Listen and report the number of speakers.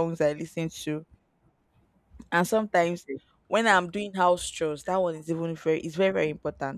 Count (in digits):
1